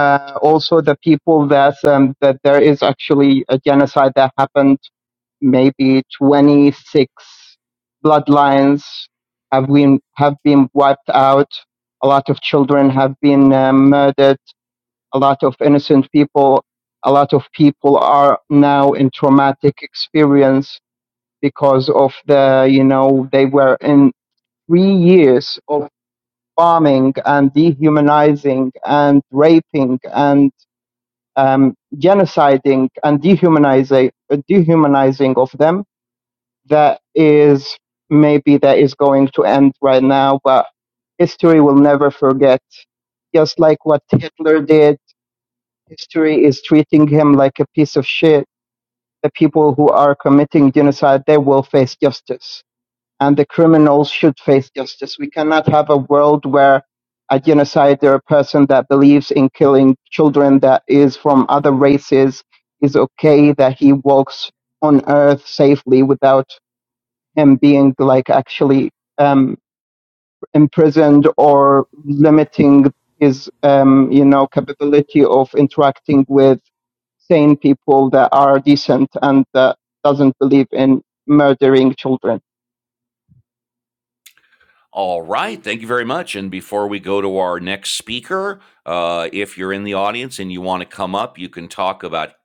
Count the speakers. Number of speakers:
two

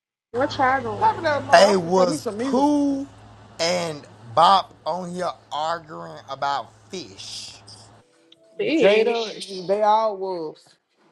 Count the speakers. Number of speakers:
three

